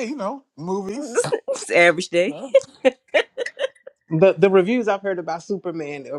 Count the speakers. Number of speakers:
three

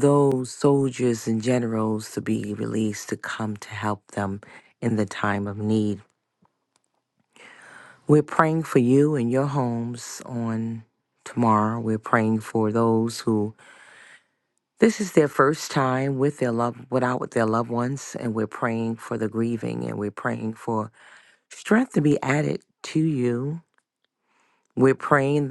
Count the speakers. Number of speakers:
one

